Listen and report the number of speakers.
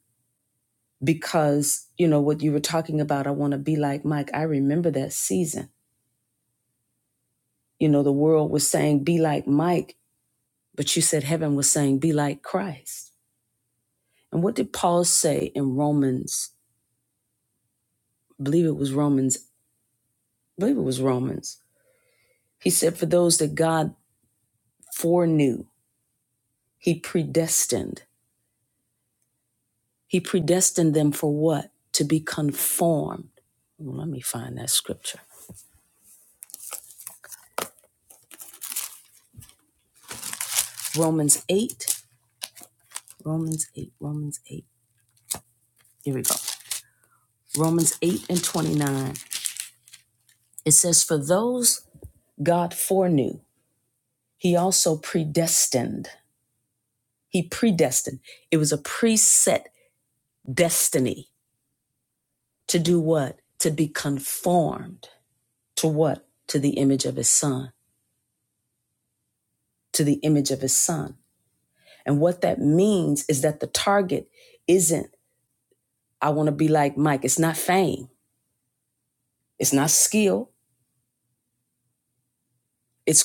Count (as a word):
one